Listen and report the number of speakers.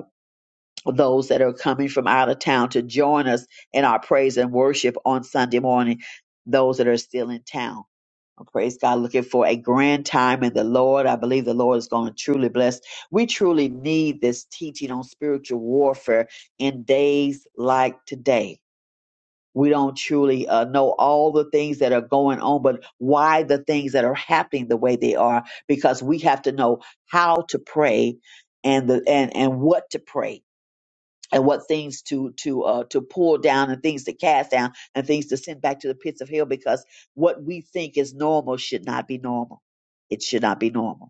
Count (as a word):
one